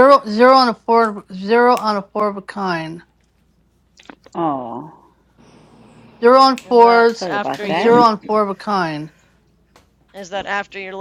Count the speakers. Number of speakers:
3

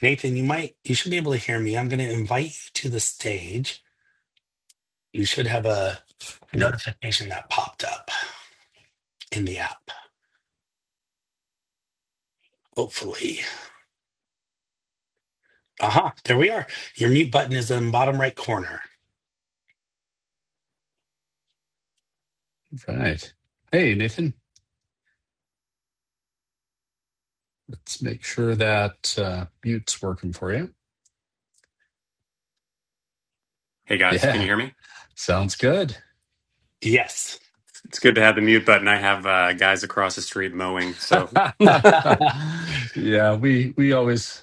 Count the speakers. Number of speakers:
3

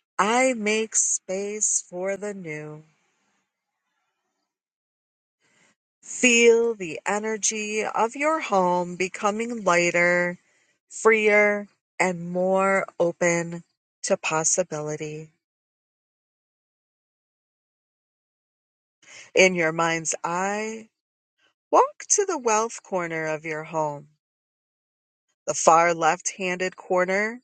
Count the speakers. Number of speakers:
1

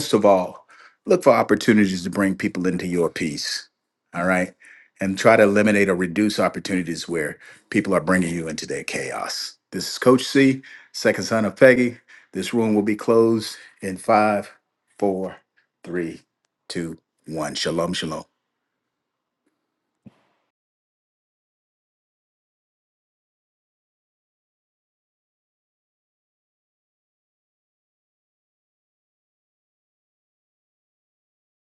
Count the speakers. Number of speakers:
1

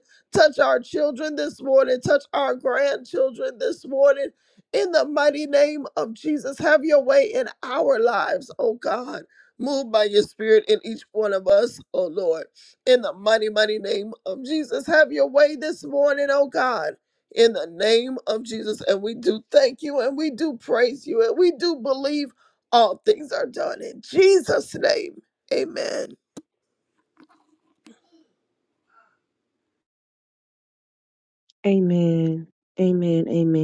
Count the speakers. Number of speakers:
2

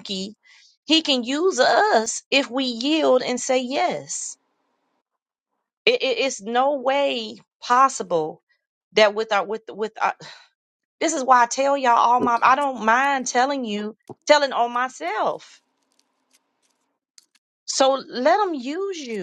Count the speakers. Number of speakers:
1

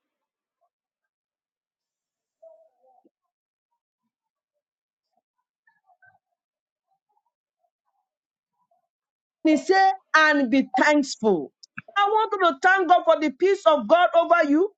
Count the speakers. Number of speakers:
1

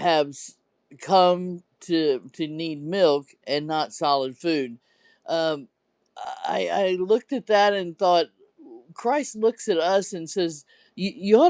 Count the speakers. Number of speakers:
1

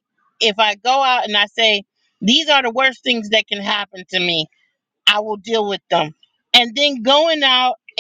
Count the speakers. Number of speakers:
1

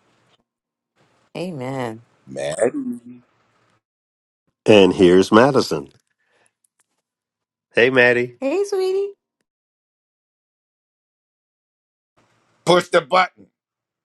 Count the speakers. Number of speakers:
3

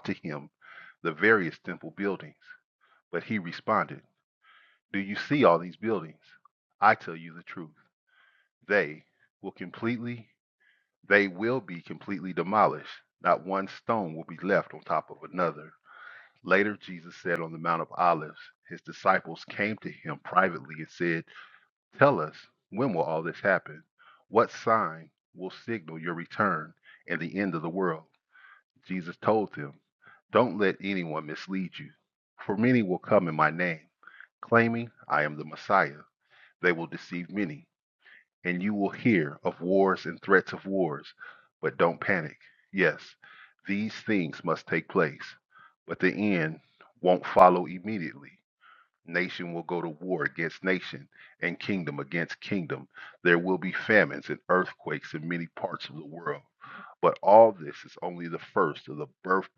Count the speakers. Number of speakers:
1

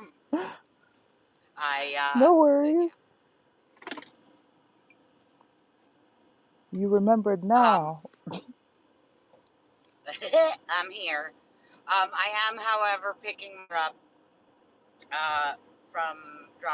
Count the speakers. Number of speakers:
2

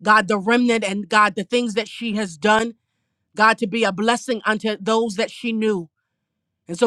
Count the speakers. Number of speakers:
1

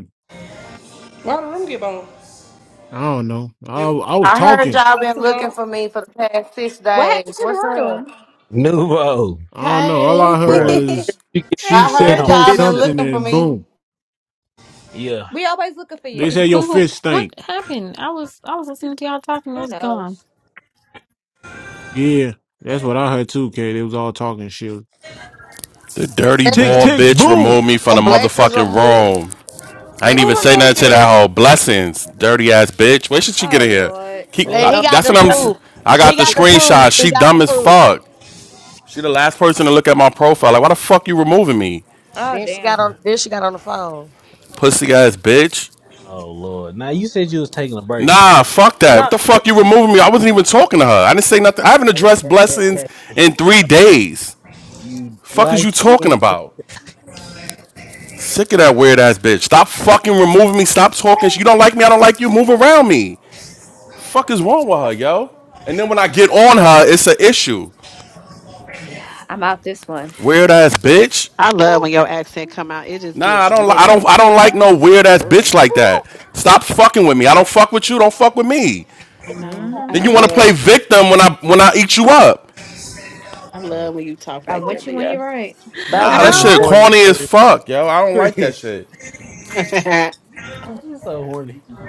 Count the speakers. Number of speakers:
9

